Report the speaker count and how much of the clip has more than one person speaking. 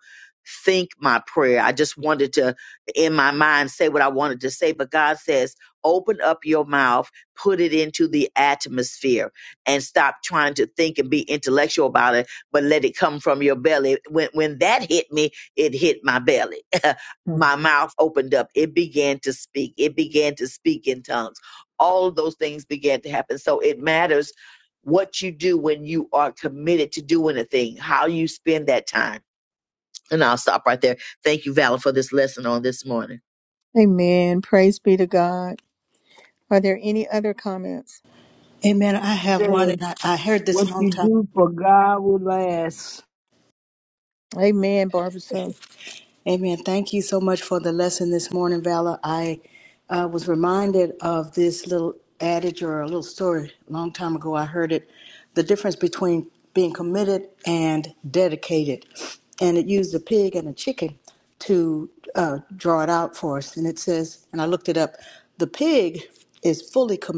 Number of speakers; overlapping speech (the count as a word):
four, about 1%